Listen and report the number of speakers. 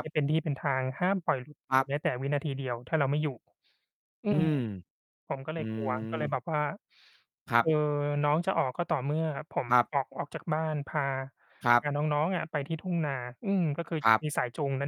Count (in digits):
2